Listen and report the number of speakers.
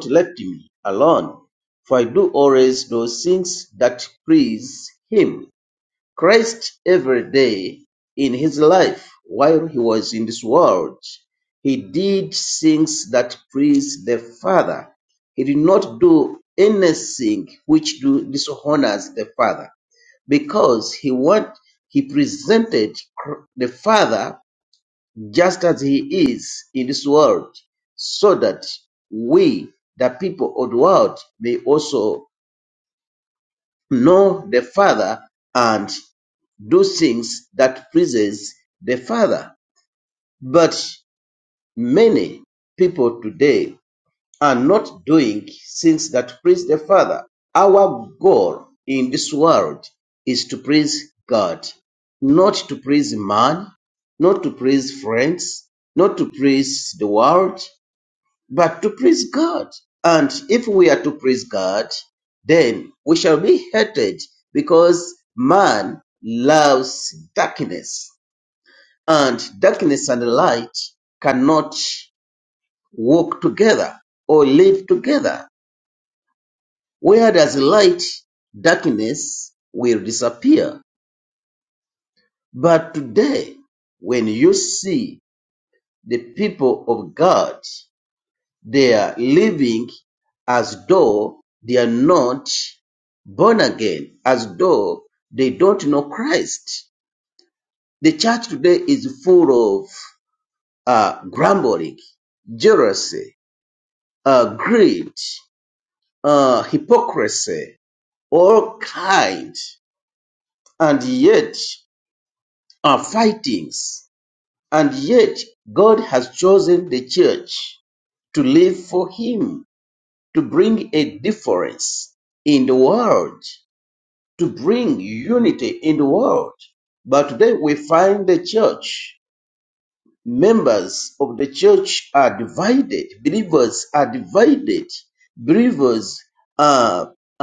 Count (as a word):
one